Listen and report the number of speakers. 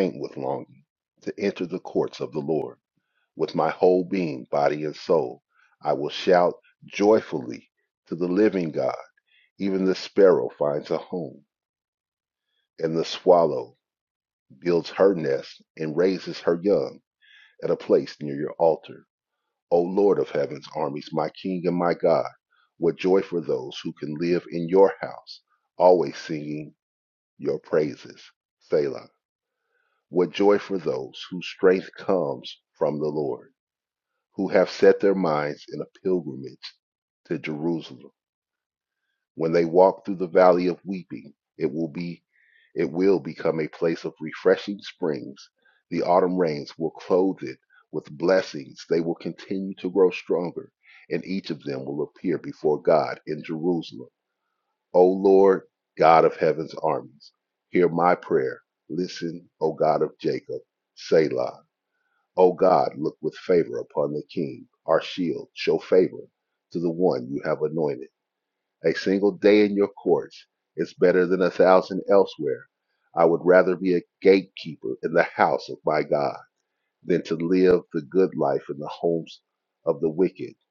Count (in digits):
1